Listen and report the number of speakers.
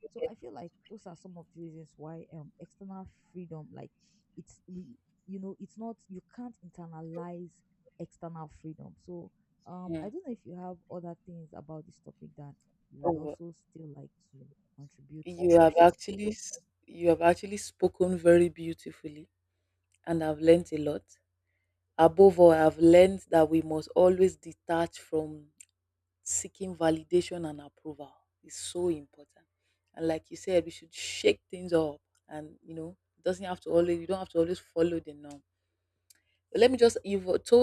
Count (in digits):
2